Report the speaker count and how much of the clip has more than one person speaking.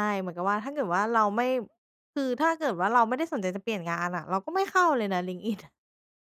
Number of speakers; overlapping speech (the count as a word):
one, no overlap